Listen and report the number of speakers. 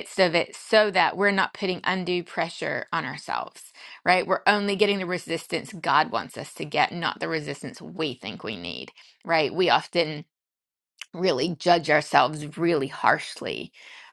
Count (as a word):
one